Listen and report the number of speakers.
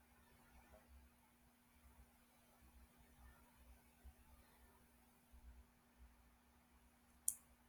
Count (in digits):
0